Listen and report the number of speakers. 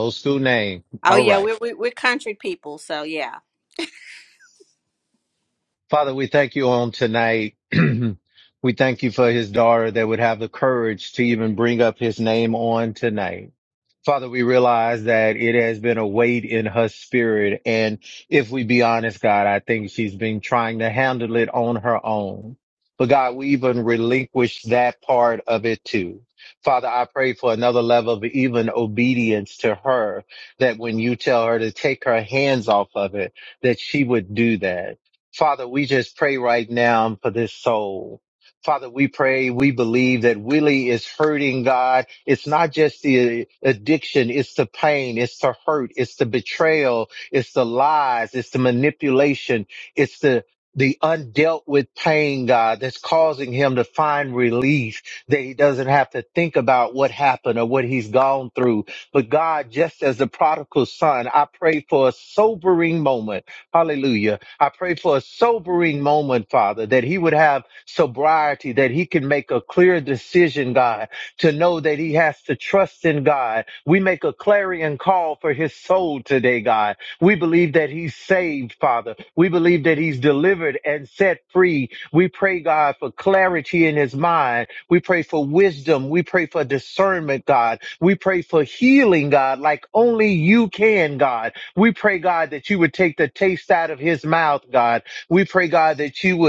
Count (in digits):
2